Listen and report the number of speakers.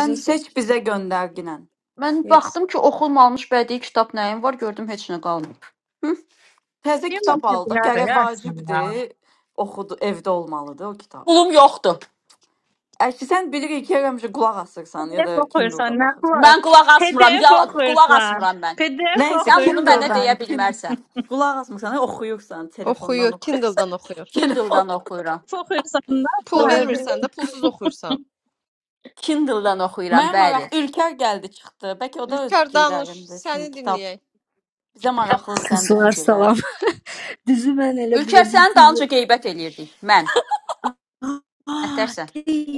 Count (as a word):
five